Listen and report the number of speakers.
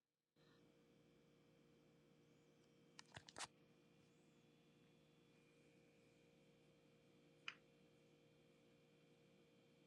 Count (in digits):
0